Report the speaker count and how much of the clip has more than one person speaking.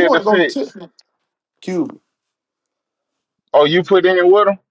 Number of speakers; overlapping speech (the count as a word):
two, about 11%